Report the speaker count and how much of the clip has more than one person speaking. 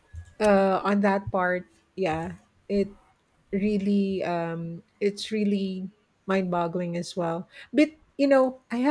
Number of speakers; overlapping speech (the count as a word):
one, no overlap